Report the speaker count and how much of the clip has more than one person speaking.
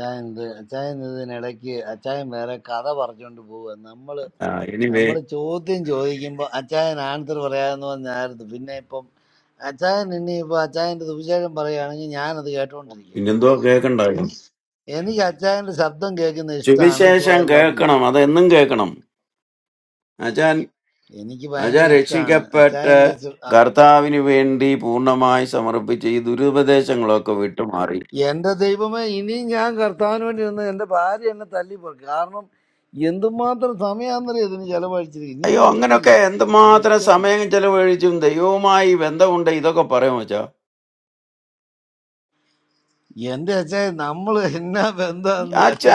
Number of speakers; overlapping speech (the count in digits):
2, about 11%